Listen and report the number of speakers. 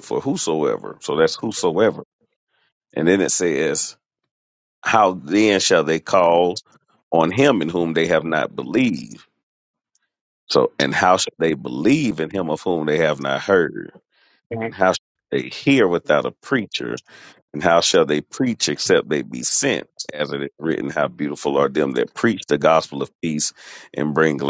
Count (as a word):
one